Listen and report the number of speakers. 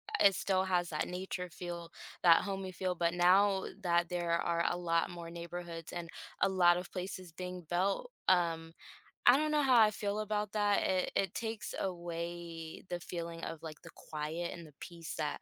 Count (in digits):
1